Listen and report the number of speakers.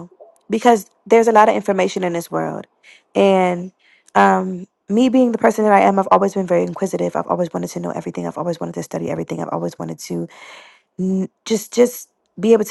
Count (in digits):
1